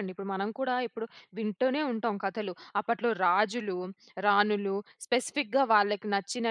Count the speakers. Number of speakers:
1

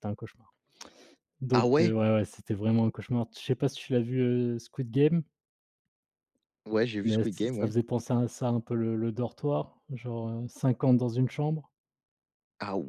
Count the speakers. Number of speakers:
2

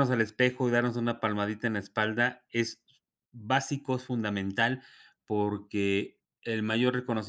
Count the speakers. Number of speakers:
1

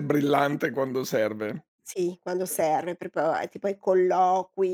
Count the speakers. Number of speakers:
2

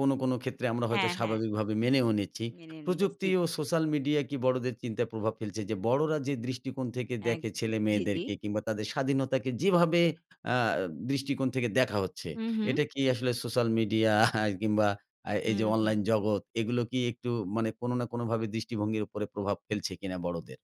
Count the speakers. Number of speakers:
2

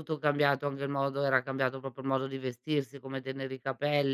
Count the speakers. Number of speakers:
1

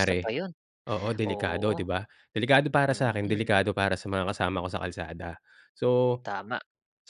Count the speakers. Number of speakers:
2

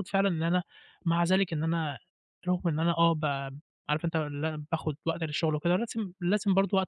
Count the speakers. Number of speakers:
1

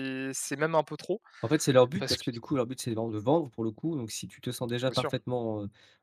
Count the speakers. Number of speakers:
2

